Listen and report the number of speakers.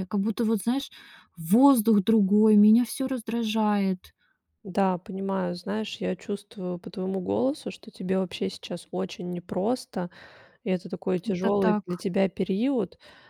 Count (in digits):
2